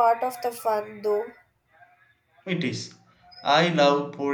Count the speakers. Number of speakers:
2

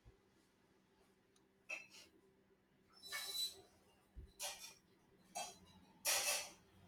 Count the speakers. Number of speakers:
0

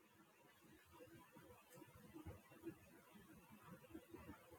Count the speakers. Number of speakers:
0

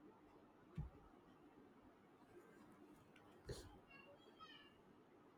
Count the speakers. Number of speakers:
0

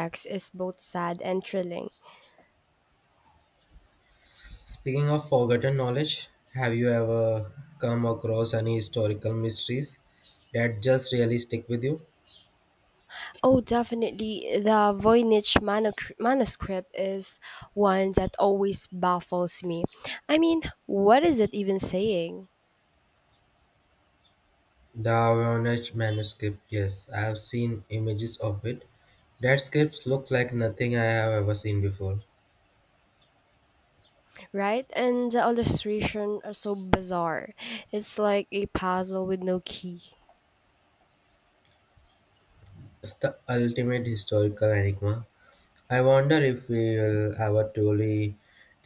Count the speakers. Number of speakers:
2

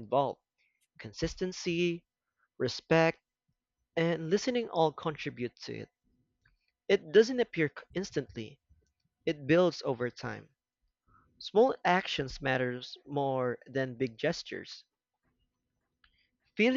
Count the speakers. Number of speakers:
1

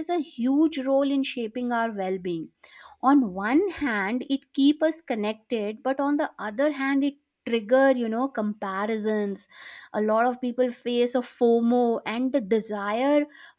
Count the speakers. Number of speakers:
1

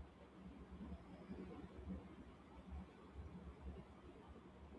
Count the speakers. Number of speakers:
0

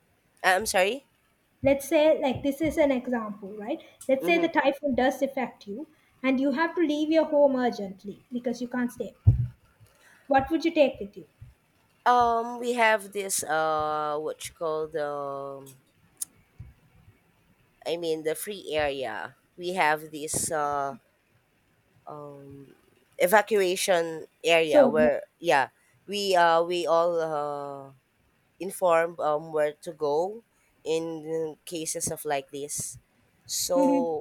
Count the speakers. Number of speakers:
2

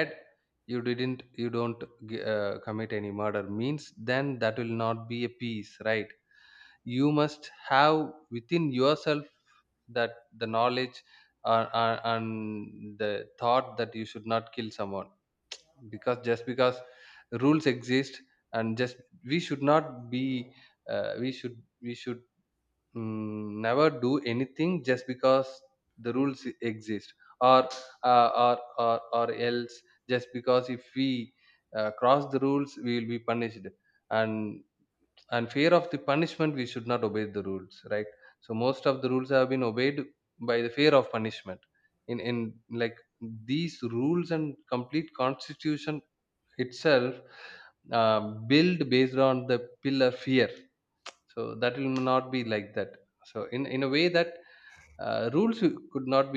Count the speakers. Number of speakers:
1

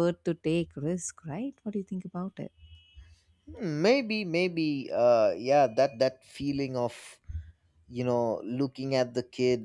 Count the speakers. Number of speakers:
2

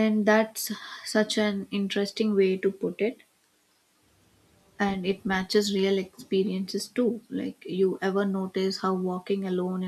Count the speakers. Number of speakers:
1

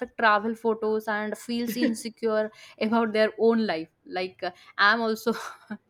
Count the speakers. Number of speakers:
1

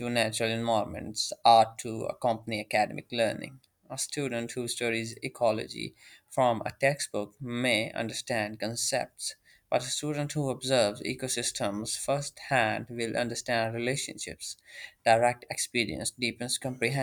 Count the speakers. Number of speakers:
1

